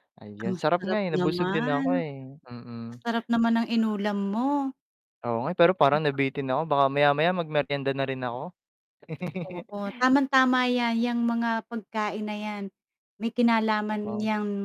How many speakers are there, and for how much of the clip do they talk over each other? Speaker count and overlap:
2, about 14%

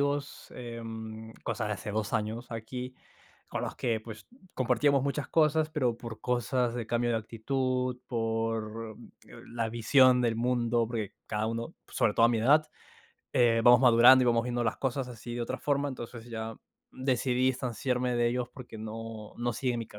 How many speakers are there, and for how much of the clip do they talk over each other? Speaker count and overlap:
1, no overlap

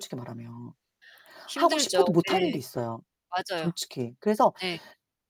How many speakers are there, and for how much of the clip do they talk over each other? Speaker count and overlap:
2, about 22%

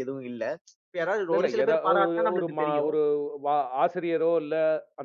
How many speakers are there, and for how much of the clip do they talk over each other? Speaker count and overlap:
2, about 27%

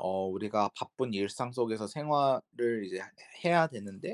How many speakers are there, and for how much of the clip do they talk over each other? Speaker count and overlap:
1, no overlap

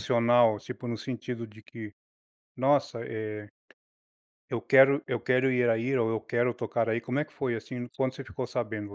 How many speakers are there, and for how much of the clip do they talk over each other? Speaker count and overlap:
1, no overlap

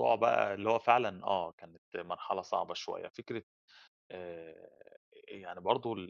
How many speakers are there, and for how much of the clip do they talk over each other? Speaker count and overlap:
1, no overlap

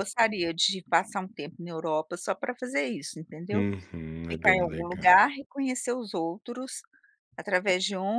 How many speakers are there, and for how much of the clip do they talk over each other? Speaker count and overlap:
2, about 11%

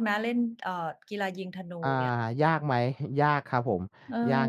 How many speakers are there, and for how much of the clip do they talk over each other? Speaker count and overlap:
2, about 8%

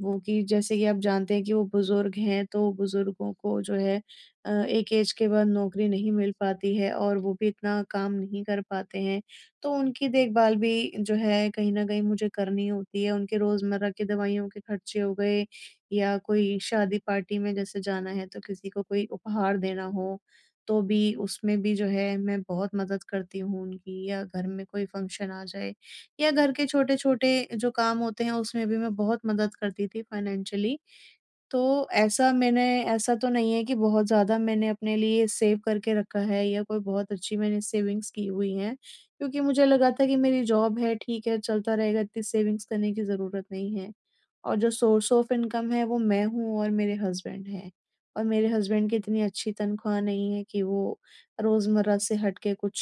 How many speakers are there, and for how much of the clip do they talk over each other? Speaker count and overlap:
1, no overlap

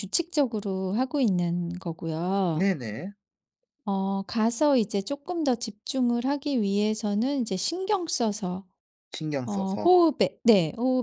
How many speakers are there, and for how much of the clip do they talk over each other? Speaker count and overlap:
2, about 5%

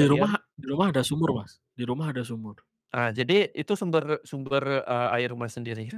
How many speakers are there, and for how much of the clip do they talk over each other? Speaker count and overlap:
2, about 6%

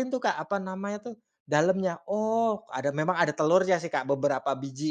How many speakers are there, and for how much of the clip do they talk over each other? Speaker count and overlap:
1, no overlap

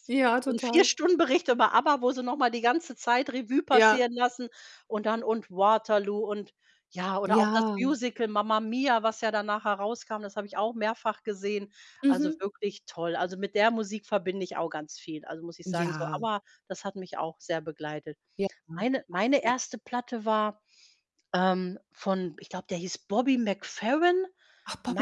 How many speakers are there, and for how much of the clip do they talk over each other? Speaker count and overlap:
2, about 9%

